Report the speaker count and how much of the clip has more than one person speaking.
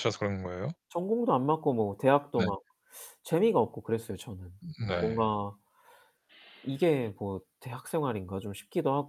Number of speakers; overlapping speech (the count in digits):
2, about 4%